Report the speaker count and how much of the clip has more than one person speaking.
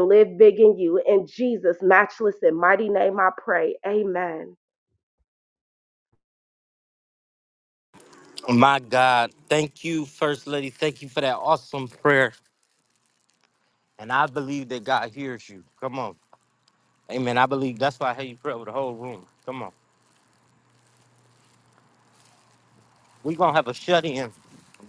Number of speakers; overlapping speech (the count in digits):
2, no overlap